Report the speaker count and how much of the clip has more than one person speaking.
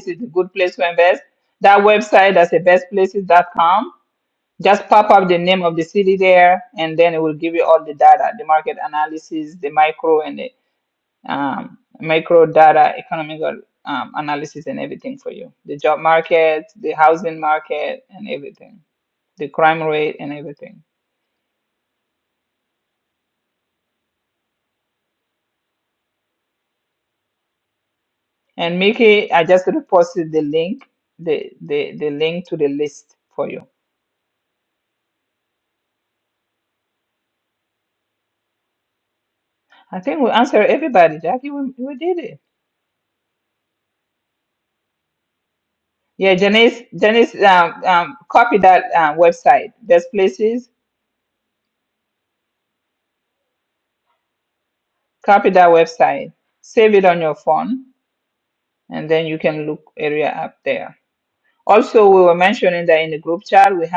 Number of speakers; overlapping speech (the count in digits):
1, no overlap